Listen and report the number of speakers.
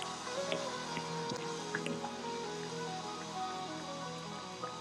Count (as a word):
zero